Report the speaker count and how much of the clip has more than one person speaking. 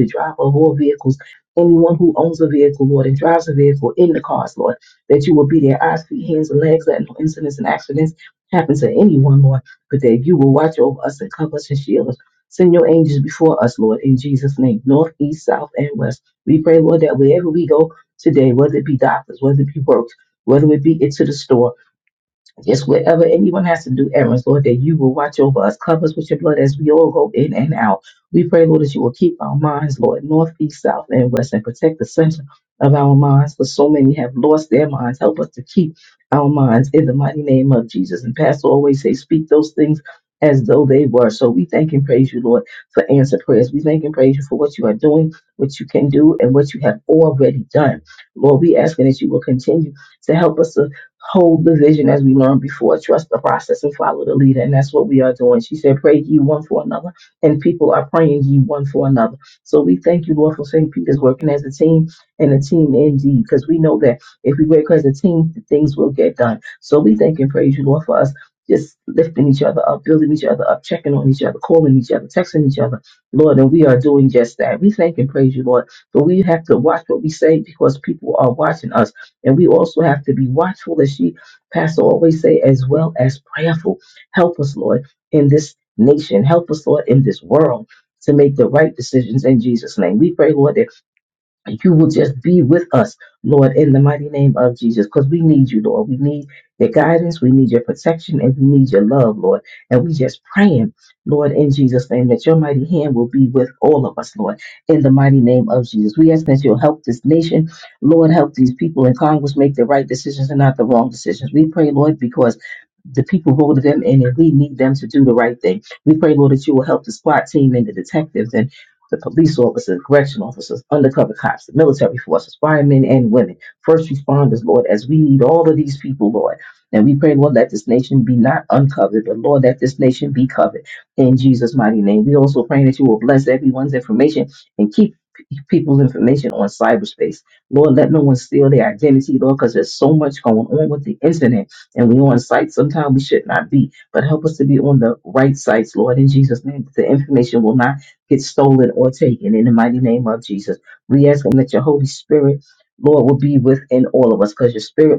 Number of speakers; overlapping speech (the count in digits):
1, no overlap